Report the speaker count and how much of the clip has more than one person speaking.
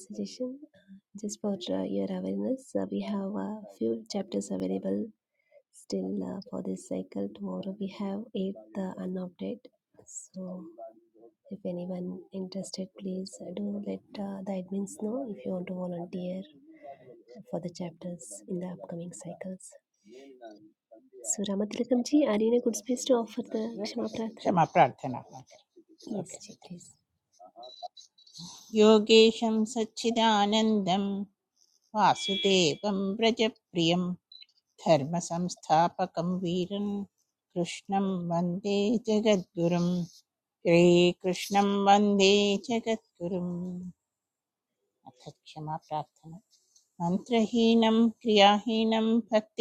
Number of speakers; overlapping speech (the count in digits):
2, about 1%